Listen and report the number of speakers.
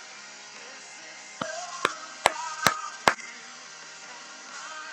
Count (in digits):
0